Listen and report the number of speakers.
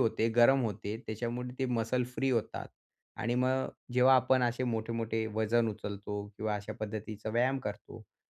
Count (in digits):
1